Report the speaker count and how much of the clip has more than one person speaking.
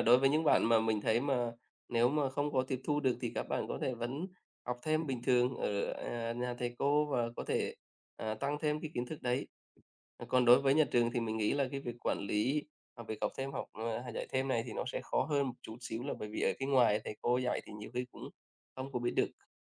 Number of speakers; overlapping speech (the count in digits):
1, no overlap